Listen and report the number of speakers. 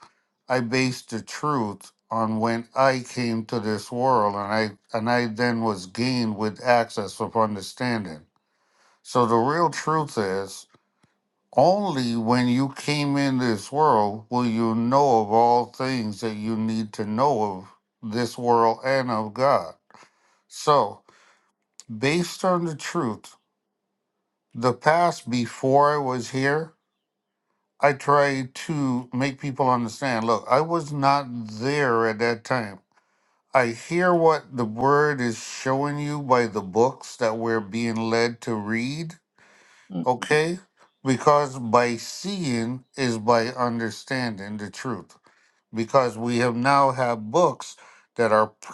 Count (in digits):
1